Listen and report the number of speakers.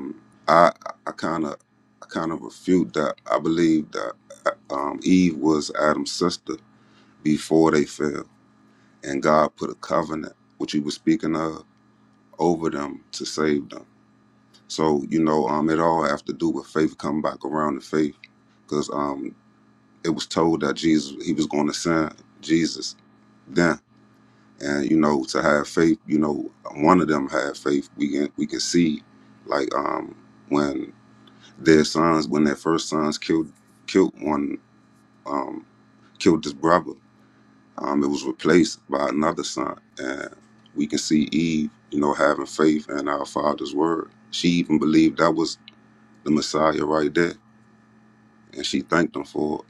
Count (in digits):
1